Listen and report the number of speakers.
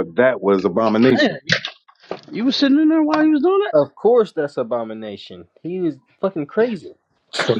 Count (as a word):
three